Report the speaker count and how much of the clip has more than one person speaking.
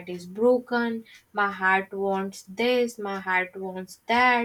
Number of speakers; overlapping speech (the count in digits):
1, no overlap